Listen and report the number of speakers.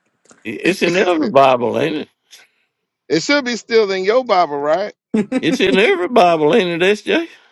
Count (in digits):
2